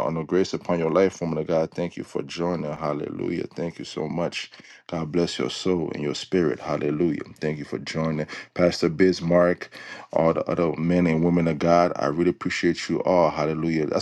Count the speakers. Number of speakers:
1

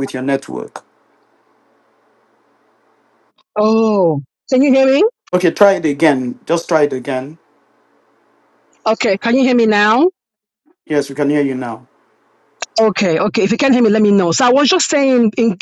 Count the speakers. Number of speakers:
2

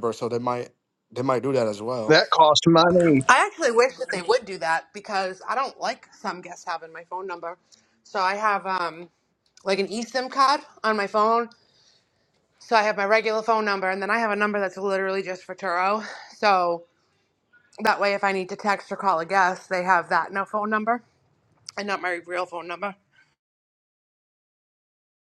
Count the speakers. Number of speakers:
3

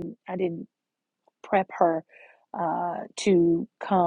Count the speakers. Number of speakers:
1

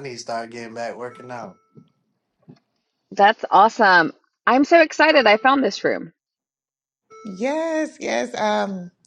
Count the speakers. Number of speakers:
3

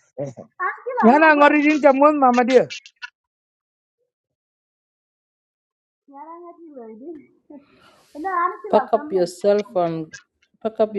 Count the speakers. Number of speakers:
3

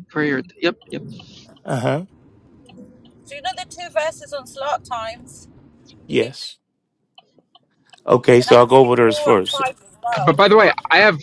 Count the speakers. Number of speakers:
3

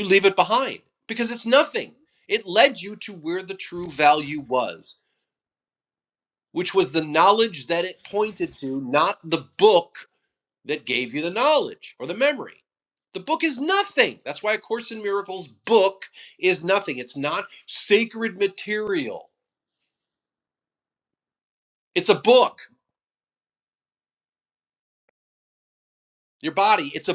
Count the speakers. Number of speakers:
1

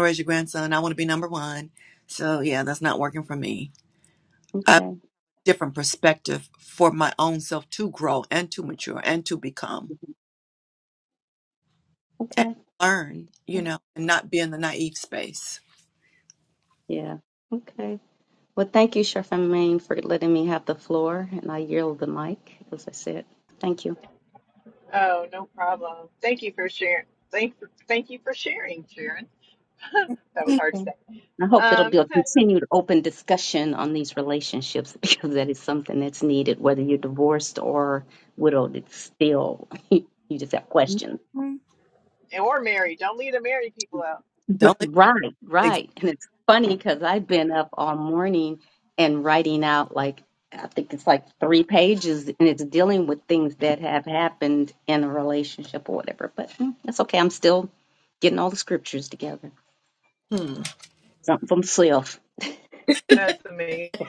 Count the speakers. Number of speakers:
3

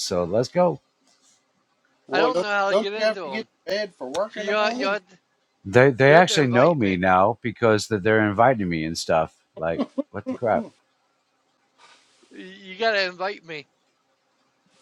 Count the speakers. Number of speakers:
3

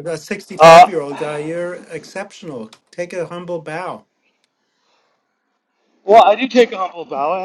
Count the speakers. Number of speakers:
2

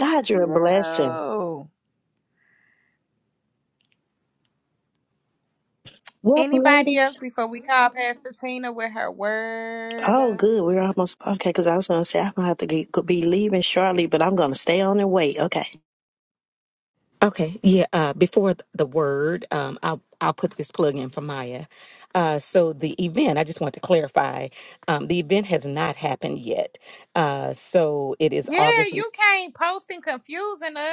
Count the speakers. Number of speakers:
3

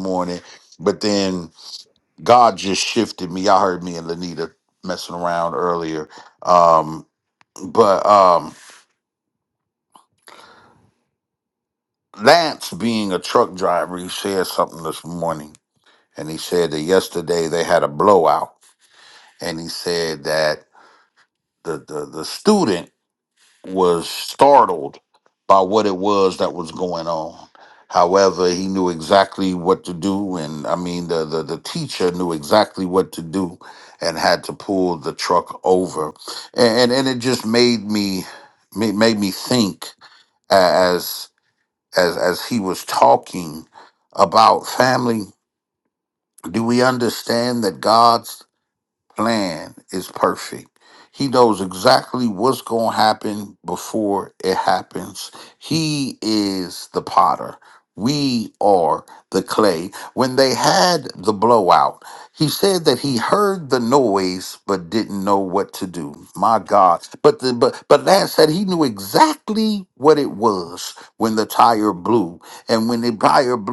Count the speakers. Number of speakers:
1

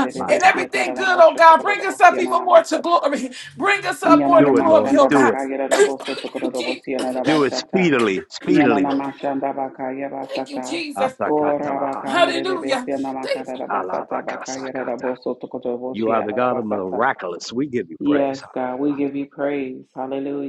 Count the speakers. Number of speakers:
3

